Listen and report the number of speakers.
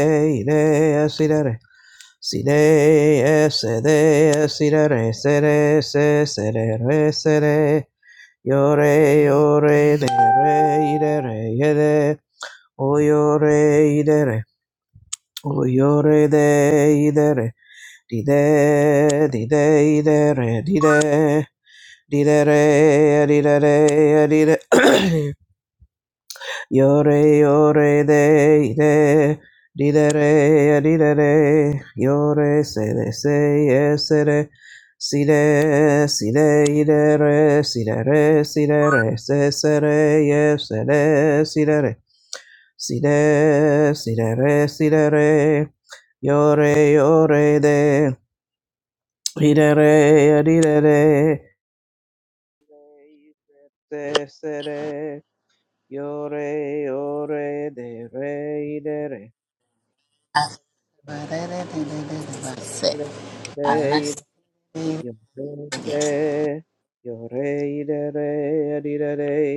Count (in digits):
2